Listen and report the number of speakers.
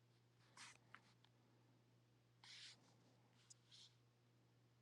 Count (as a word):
zero